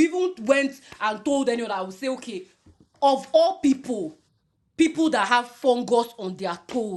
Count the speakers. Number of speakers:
one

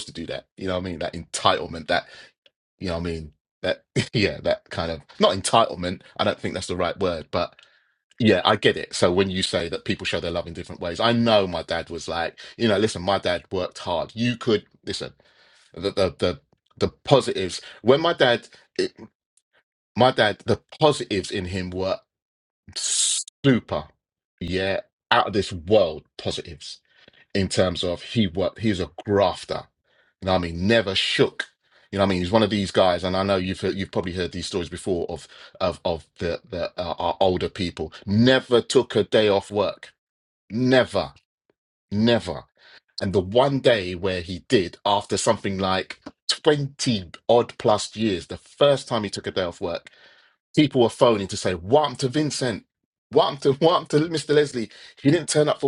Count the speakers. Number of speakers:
one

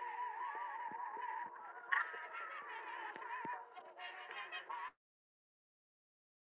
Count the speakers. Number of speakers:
zero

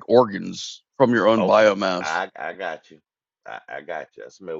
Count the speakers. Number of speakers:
two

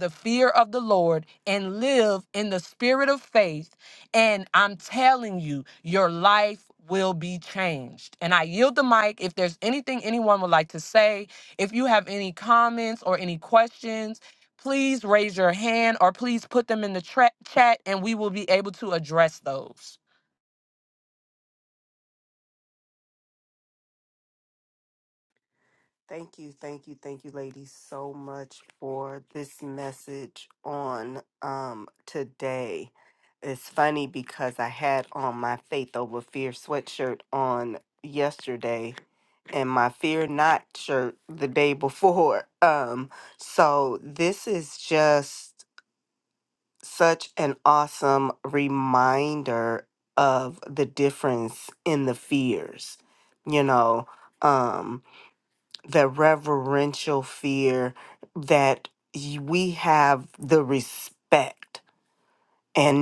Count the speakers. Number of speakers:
two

